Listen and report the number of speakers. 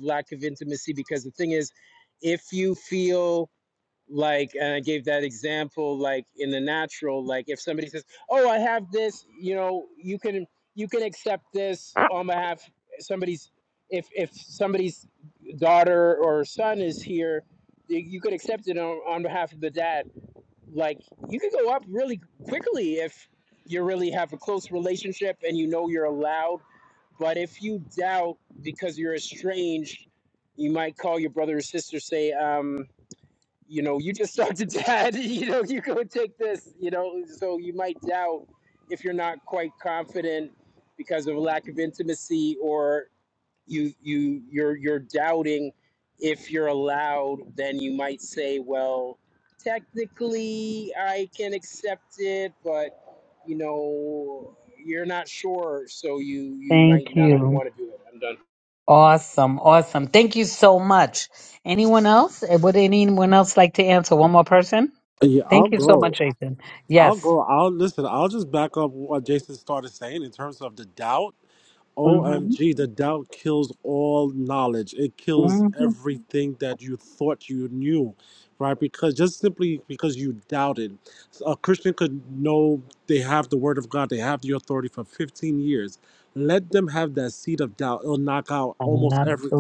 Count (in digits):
3